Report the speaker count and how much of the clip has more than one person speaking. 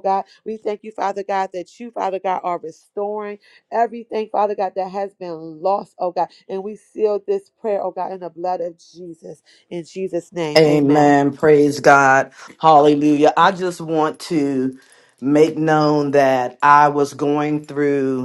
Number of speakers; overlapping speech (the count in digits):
2, about 3%